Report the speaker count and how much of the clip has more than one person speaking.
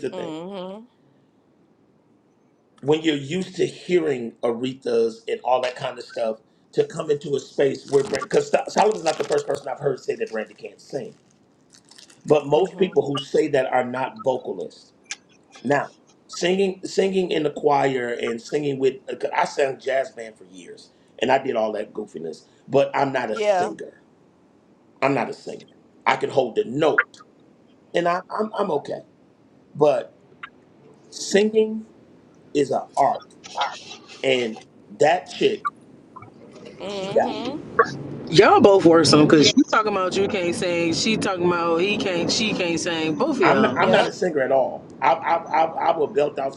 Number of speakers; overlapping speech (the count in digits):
3, about 4%